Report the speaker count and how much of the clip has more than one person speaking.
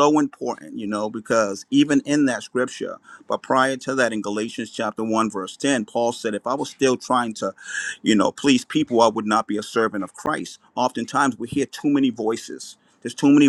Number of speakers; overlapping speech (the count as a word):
one, no overlap